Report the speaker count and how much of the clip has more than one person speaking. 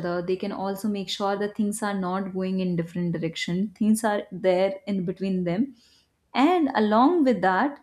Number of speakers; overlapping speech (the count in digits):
1, no overlap